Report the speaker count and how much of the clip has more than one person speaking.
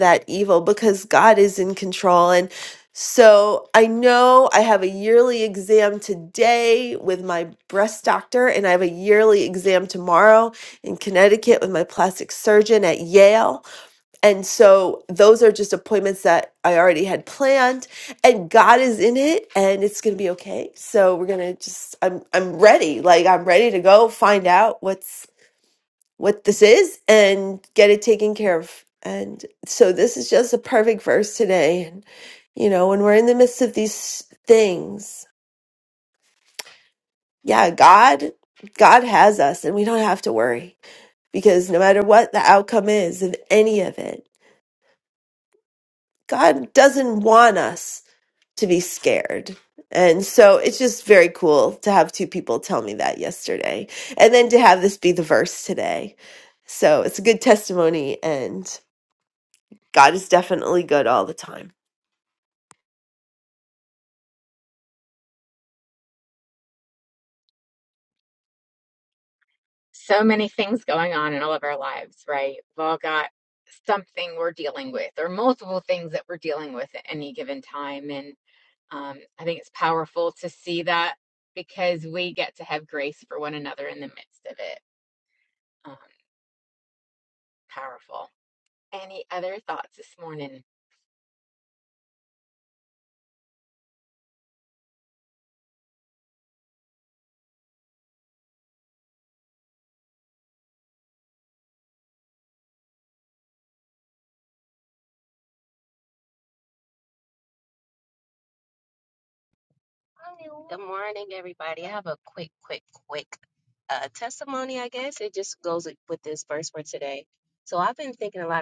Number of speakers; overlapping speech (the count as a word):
three, no overlap